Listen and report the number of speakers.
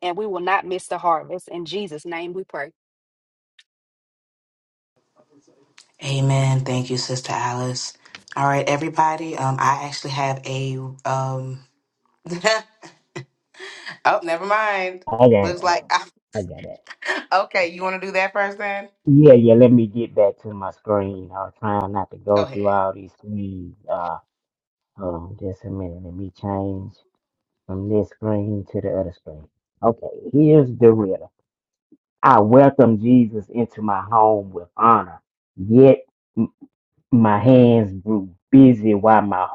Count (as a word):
three